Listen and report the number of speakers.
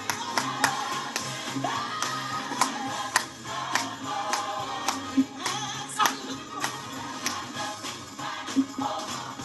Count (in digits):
0